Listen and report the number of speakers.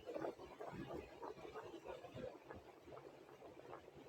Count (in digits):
0